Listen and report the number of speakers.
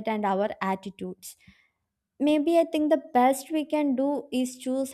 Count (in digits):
1